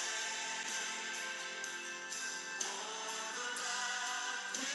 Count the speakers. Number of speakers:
0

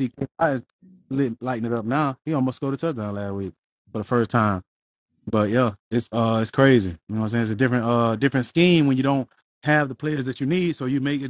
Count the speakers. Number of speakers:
1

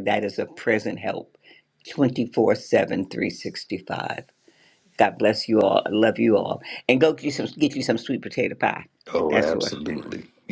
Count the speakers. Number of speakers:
2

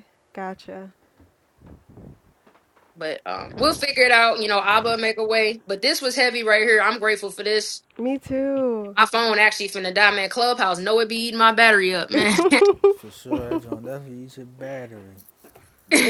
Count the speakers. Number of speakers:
3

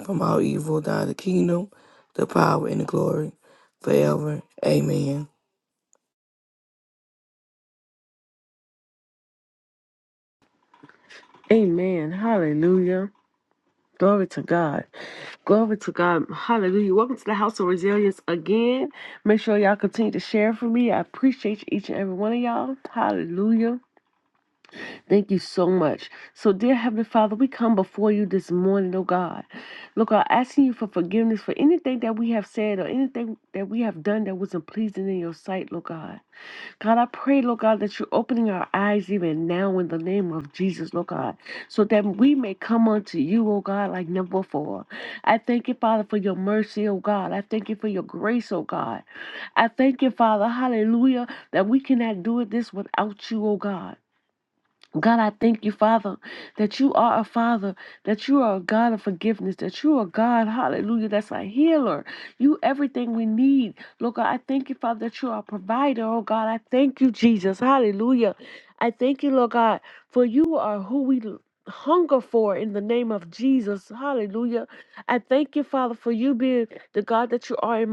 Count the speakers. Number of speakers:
2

